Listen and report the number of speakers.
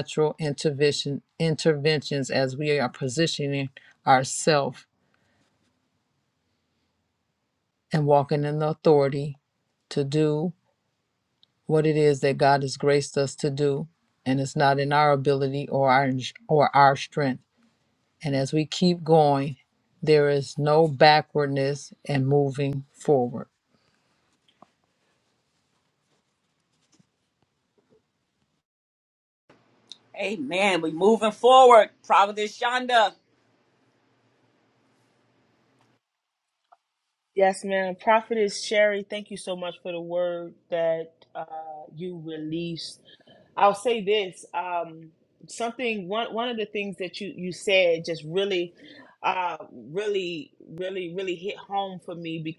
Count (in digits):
3